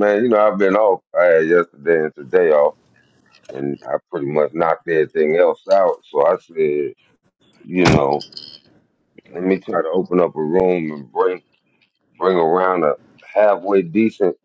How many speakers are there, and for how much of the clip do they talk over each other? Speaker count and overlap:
1, no overlap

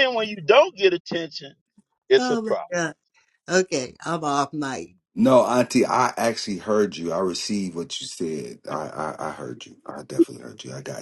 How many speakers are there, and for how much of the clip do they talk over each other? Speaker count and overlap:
3, about 4%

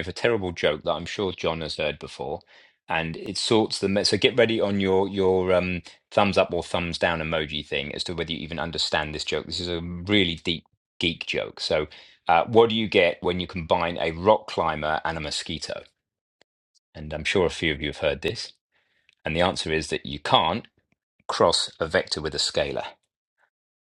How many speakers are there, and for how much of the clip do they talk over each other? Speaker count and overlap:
1, no overlap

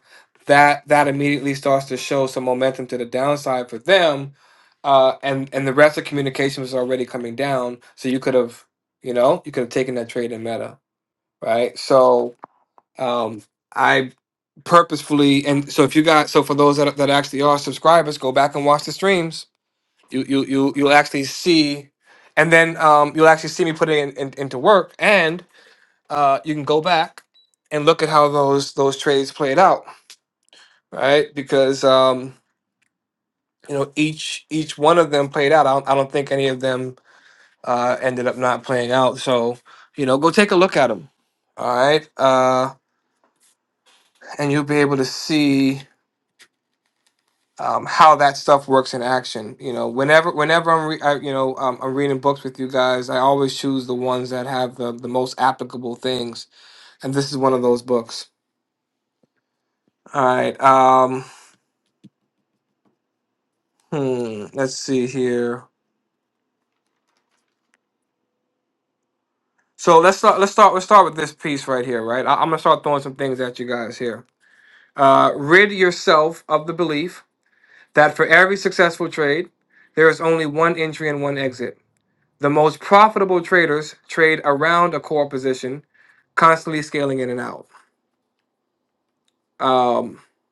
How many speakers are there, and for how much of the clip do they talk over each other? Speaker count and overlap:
1, no overlap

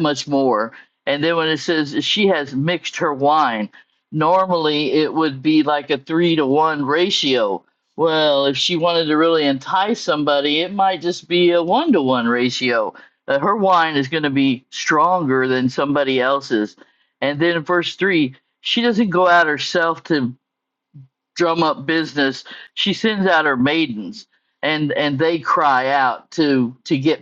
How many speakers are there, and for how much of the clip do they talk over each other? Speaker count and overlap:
1, no overlap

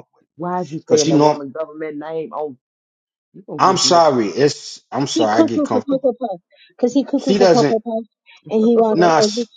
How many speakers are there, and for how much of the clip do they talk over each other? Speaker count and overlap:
3, about 30%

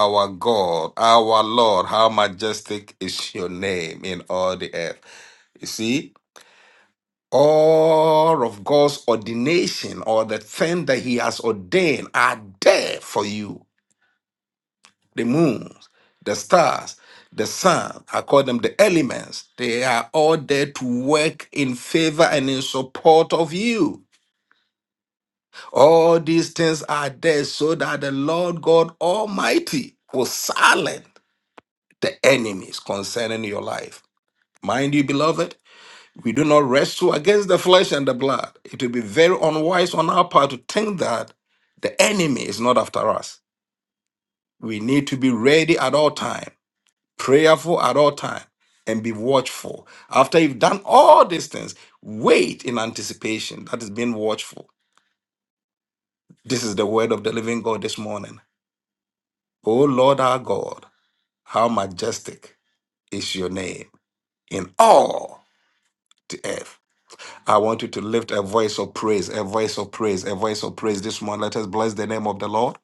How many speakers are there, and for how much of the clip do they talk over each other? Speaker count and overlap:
1, no overlap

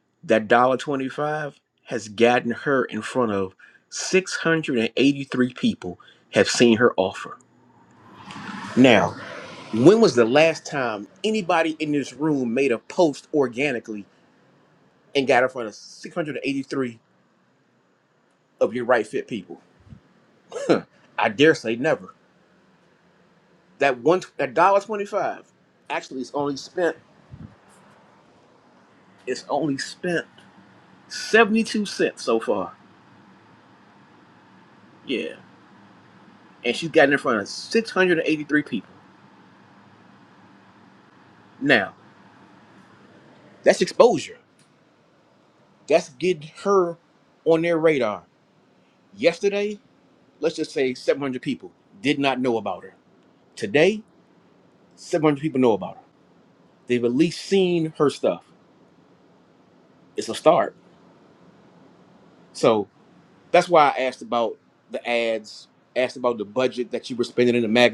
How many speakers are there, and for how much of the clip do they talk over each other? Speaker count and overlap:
1, no overlap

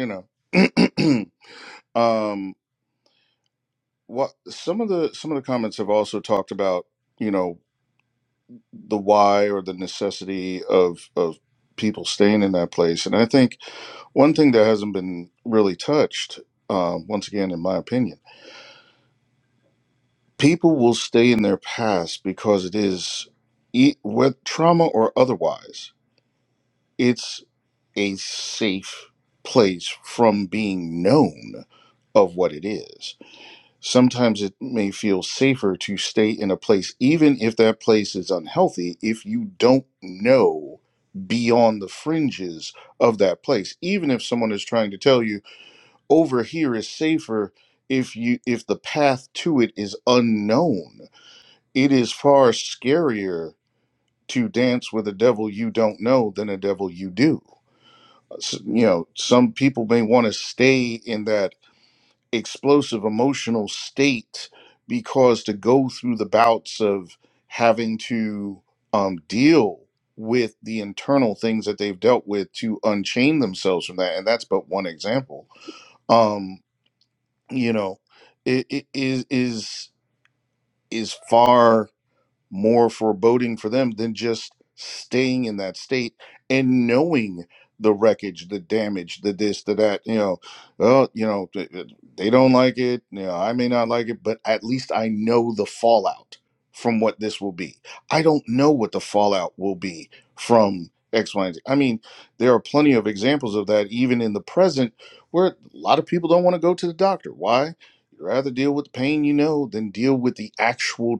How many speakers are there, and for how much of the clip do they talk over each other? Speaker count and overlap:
1, no overlap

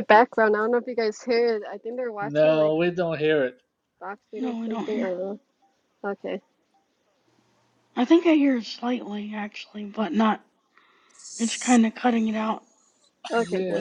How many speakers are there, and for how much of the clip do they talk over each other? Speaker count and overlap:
3, about 11%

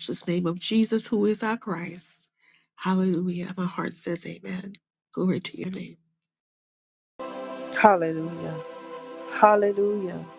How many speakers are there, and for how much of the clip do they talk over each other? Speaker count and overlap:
2, no overlap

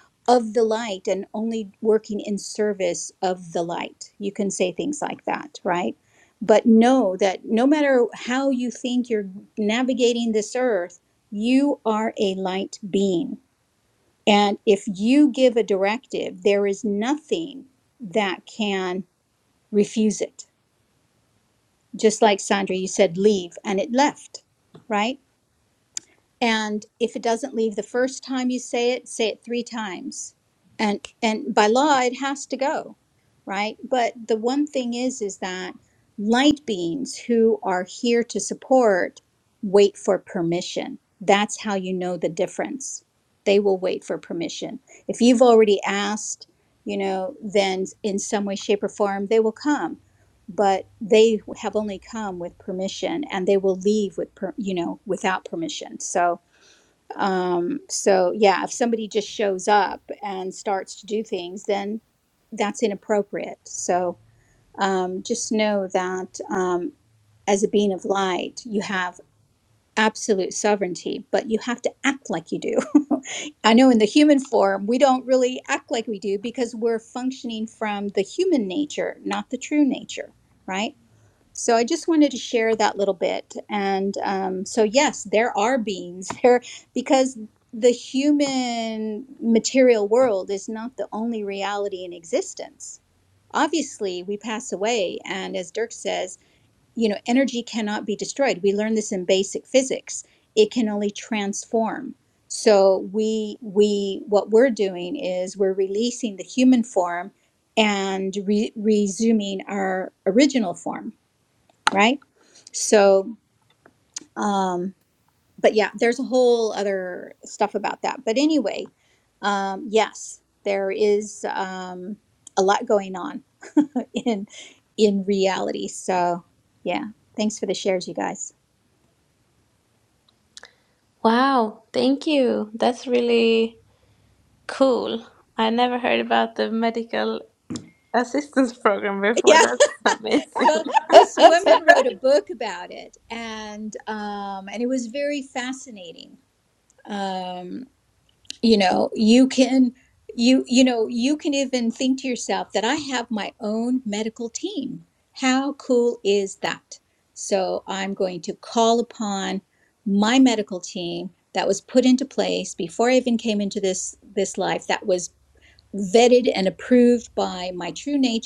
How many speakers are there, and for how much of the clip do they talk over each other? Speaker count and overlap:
2, under 1%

